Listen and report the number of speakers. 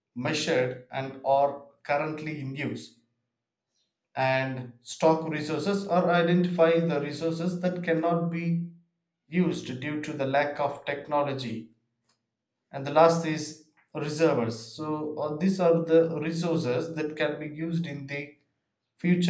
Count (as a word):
one